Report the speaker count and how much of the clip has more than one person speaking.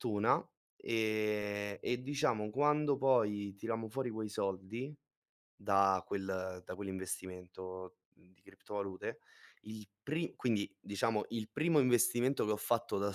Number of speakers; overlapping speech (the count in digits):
1, no overlap